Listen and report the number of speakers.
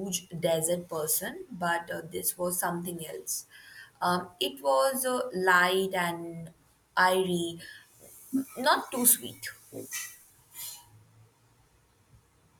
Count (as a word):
one